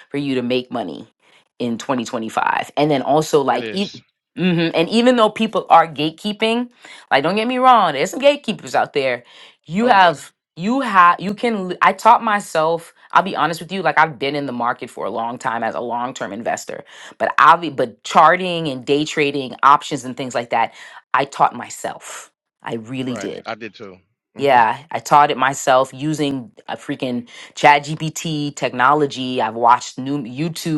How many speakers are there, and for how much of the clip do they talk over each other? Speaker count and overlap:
two, about 5%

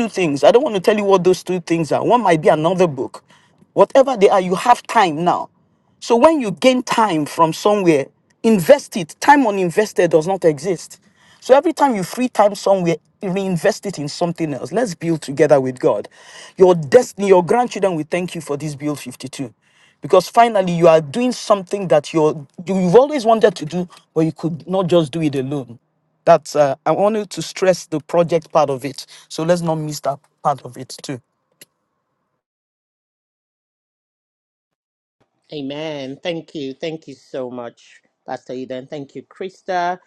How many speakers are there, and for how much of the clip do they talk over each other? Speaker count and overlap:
two, no overlap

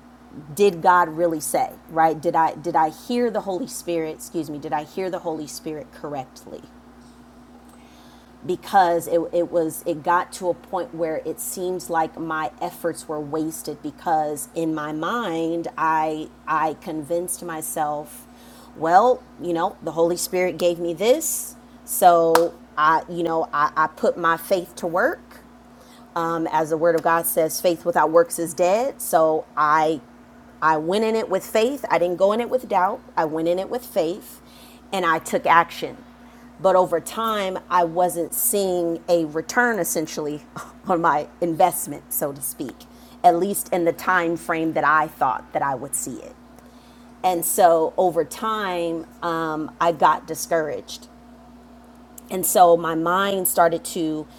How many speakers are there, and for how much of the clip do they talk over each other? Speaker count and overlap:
one, no overlap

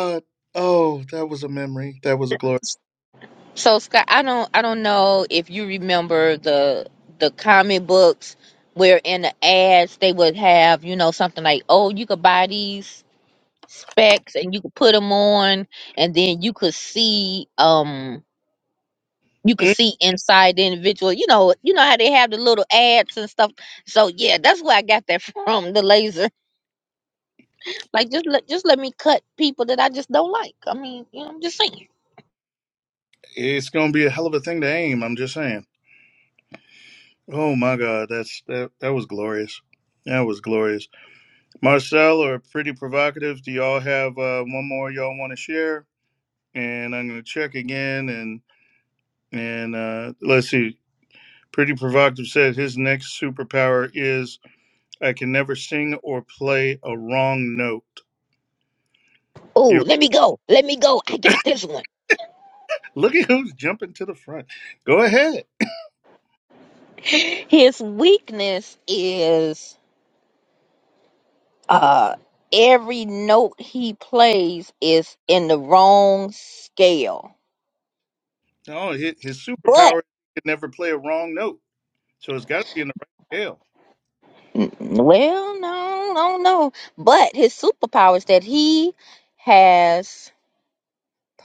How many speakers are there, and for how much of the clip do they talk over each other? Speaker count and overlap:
two, about 1%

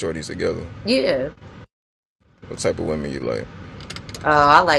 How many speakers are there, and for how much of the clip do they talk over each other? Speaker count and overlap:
two, no overlap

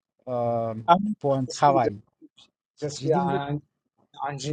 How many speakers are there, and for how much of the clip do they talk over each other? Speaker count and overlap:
two, about 17%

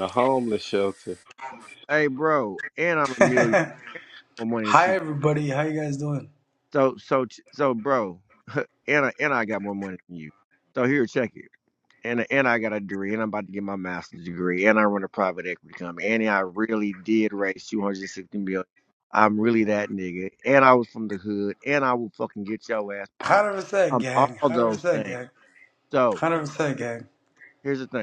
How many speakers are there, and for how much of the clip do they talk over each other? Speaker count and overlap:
three, about 7%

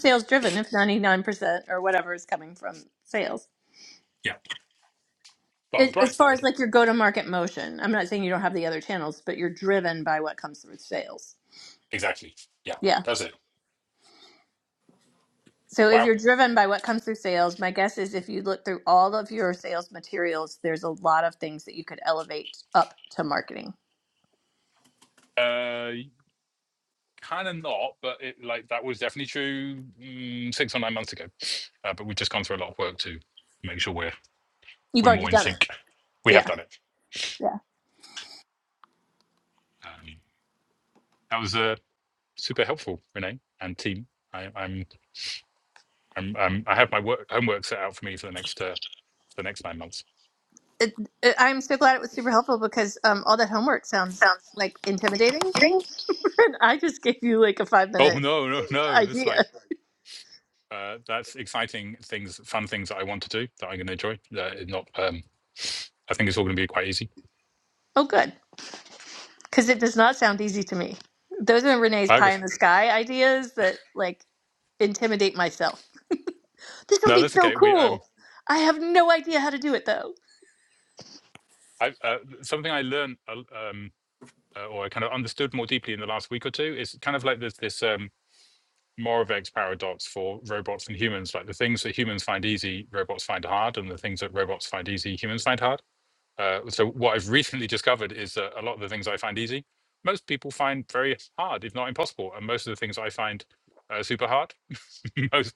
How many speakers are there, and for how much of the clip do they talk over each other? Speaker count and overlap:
two, about 4%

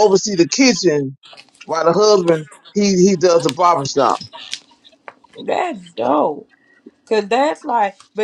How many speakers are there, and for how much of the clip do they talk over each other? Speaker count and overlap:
two, no overlap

